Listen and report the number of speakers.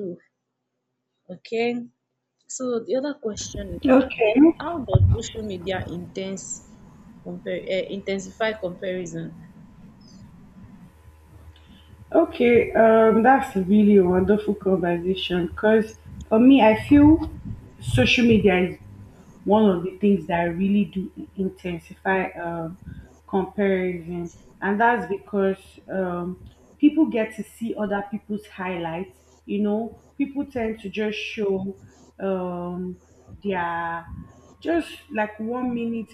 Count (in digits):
2